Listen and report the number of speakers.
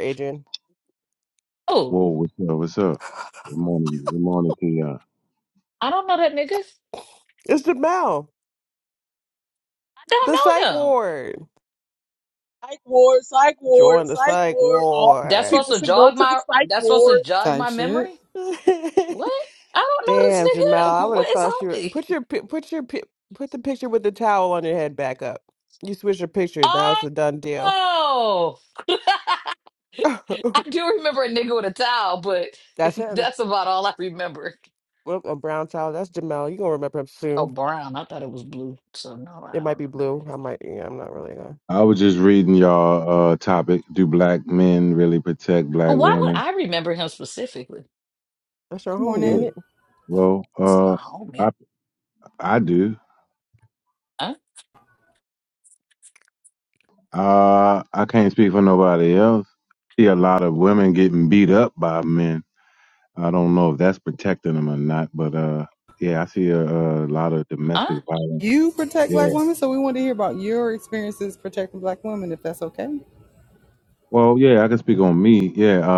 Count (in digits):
5